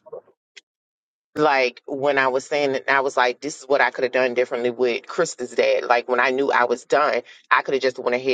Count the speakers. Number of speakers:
one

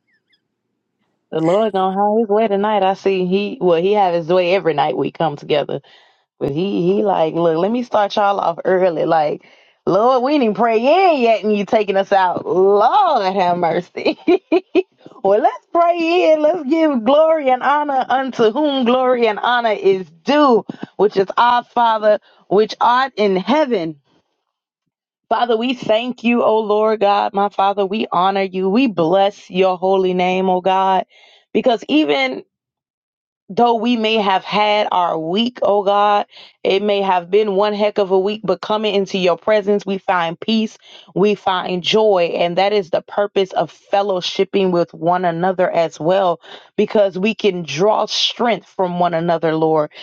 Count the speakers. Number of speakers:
one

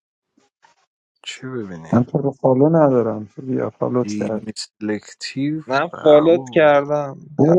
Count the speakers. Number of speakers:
three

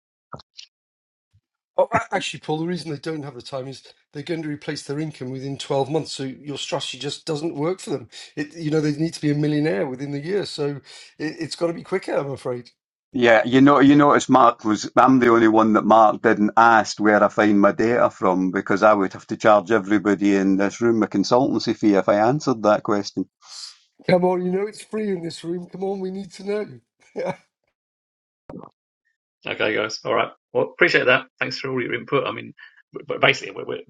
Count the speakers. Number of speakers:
three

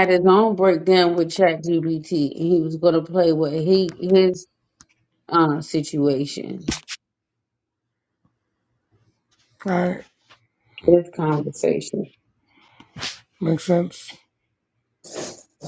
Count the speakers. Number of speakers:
two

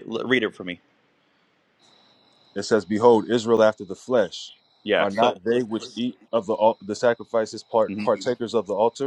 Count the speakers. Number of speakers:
two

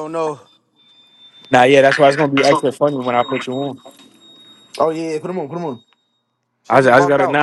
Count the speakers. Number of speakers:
three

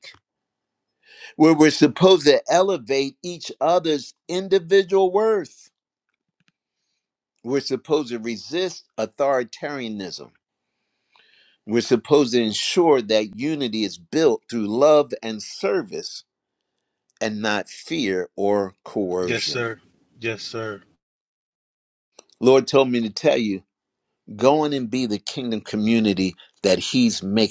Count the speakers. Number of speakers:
two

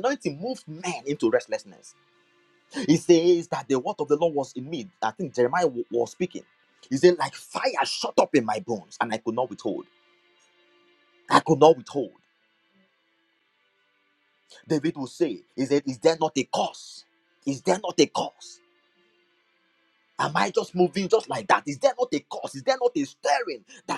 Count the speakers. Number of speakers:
one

